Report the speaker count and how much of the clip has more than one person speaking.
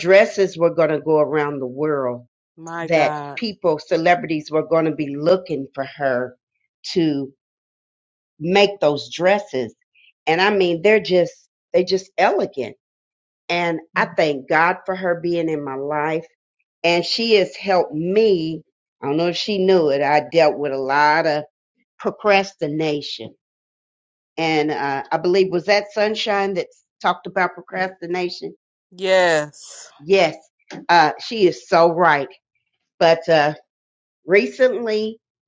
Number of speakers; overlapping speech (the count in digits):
2, about 1%